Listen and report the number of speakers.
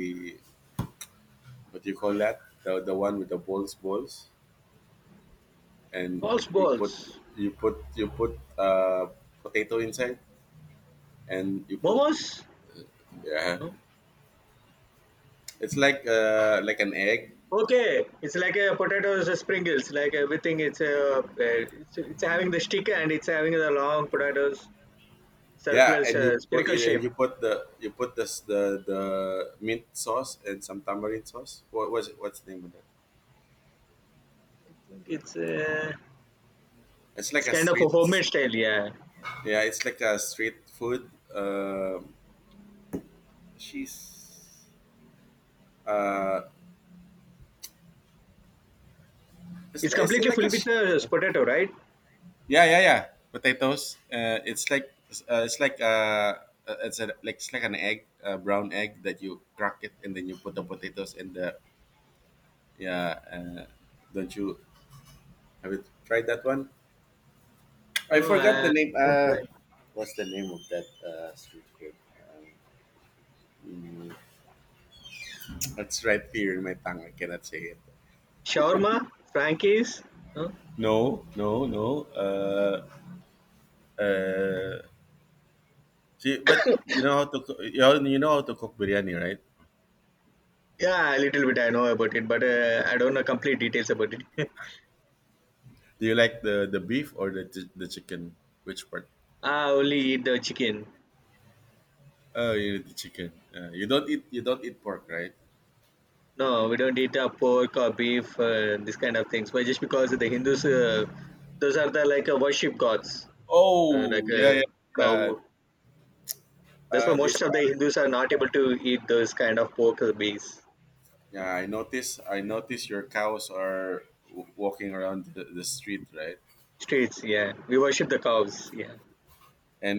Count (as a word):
two